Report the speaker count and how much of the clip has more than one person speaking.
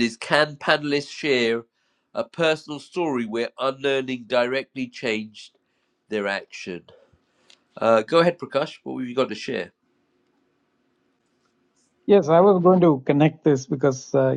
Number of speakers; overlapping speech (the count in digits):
2, no overlap